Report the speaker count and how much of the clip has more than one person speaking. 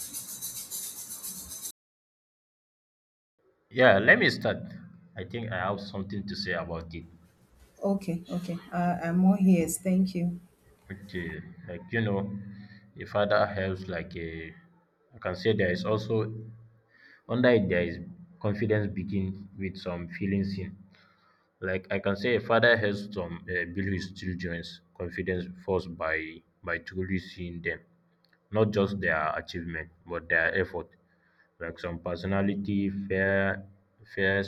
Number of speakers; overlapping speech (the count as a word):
two, no overlap